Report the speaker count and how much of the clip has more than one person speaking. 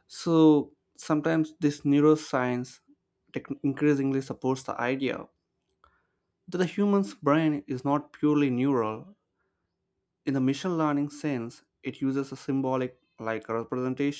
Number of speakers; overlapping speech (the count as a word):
one, no overlap